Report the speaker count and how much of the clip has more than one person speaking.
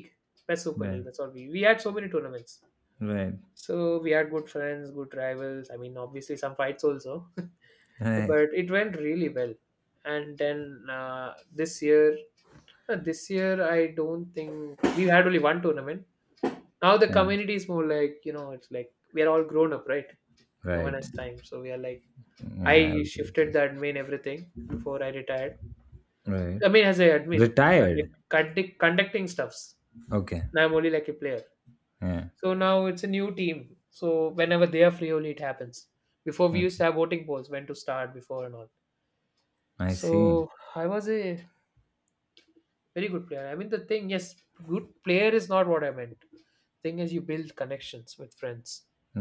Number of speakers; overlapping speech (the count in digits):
2, about 6%